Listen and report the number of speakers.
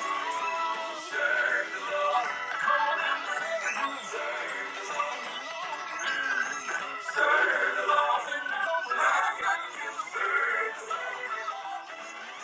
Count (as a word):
zero